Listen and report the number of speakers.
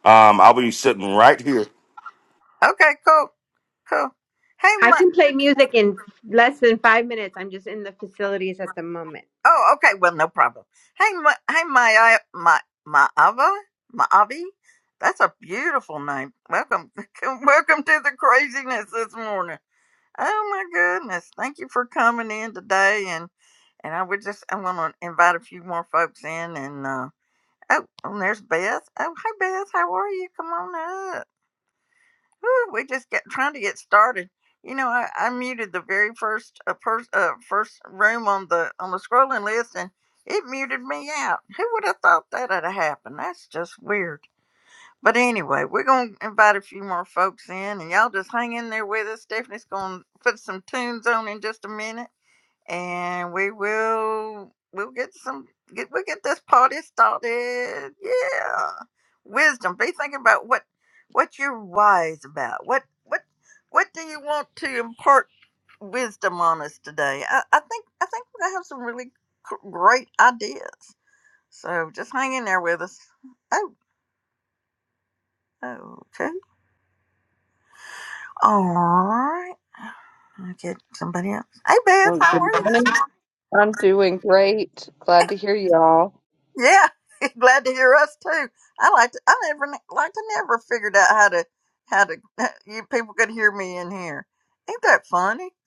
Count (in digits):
4